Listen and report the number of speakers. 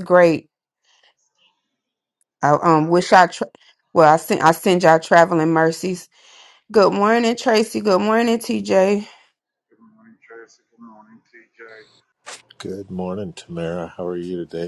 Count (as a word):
three